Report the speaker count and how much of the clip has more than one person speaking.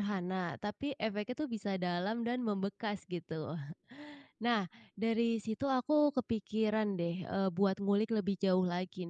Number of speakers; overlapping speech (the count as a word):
one, no overlap